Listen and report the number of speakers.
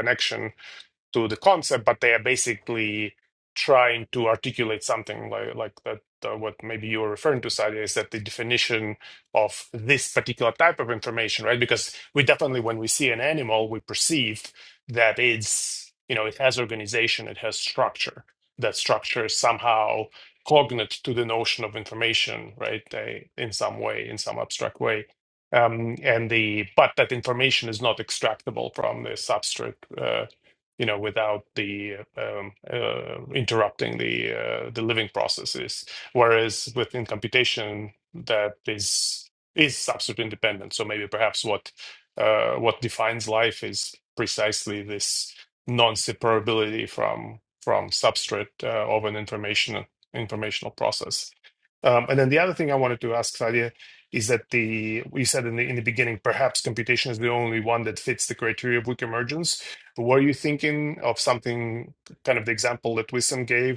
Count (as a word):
one